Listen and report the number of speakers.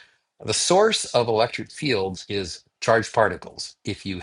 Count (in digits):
1